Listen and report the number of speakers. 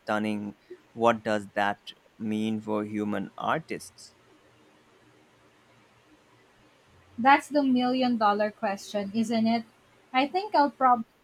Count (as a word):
two